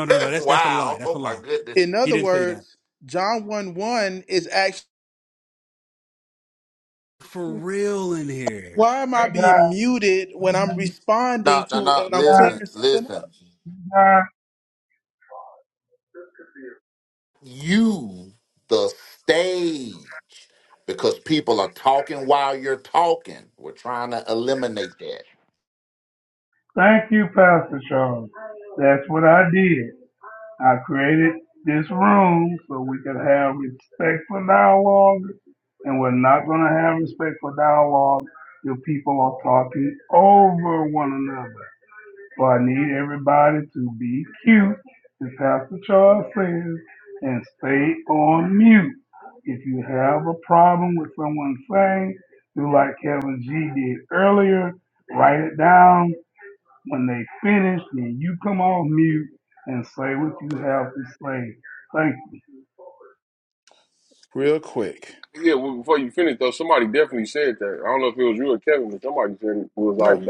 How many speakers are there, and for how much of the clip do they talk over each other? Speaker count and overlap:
five, about 6%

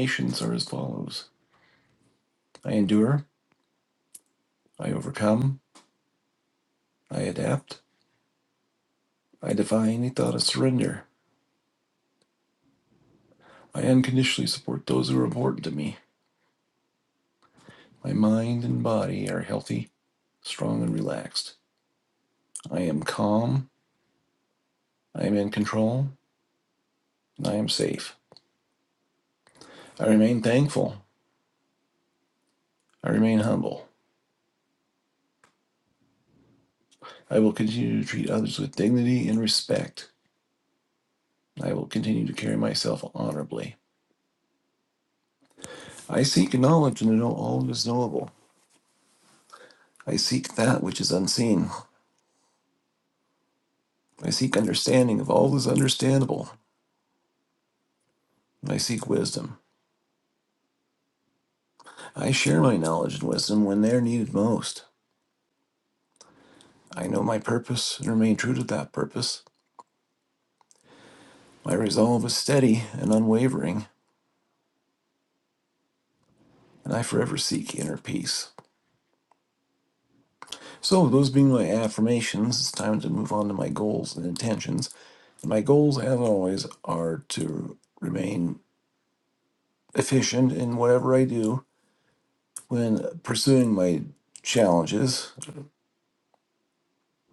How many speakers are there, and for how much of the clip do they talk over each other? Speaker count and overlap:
one, no overlap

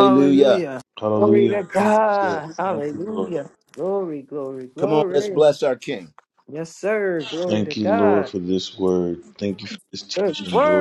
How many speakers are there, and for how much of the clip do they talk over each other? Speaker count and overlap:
three, about 48%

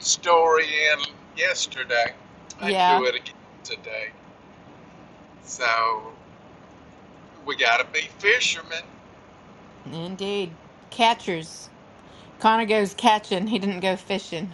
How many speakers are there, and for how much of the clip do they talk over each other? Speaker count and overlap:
two, about 3%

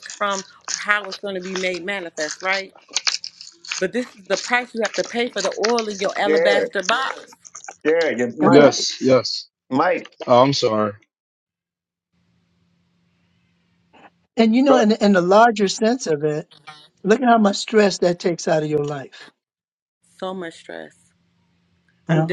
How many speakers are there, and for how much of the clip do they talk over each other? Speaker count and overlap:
four, about 6%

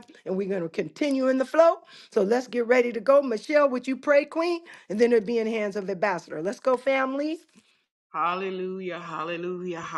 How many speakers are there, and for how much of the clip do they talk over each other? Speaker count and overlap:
two, no overlap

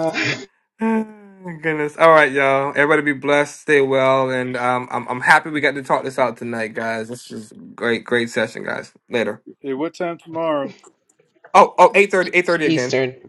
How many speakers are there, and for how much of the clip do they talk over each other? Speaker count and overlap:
three, about 2%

